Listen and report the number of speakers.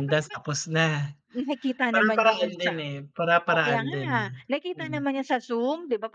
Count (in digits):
2